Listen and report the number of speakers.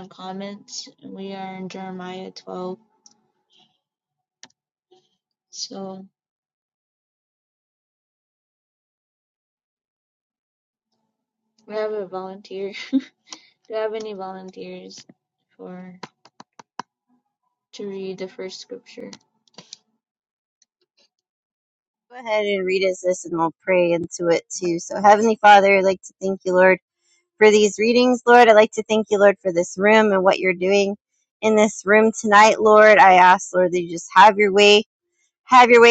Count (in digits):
2